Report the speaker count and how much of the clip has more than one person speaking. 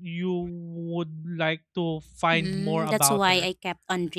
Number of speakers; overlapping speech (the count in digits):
2, about 27%